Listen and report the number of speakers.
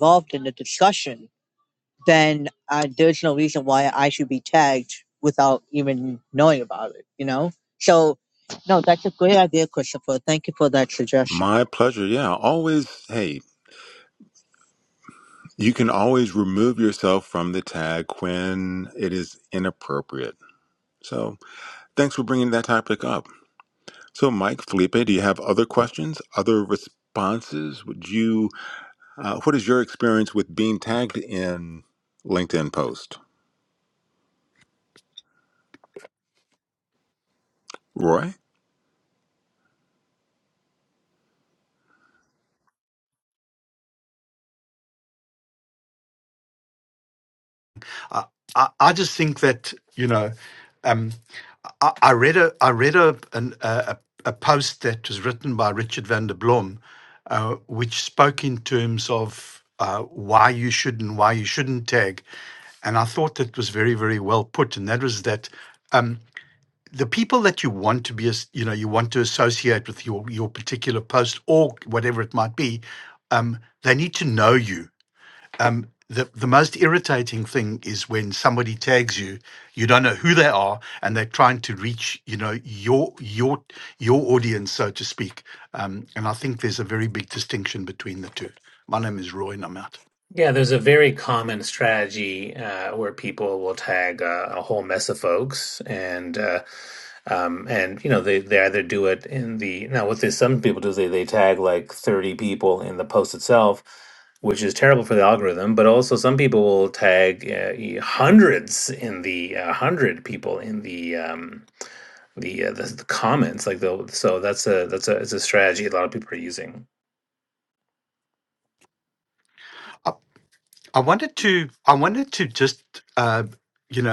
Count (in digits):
4